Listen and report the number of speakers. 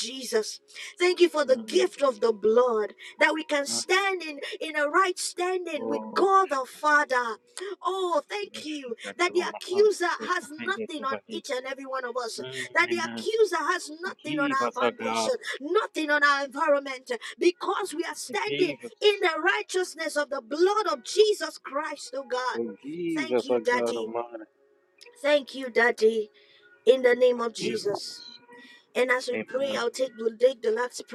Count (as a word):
two